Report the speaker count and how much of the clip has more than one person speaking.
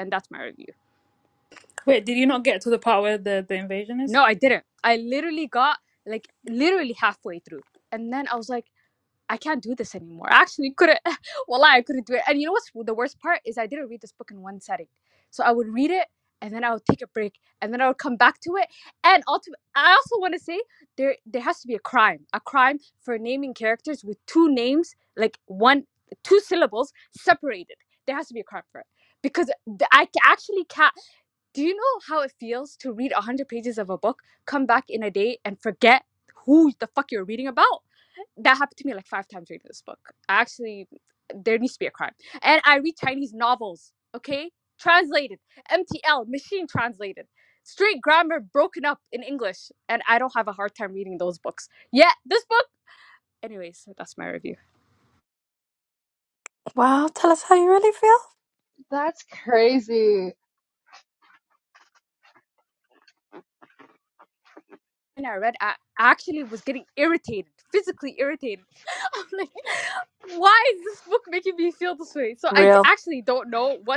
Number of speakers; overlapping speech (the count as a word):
four, about 1%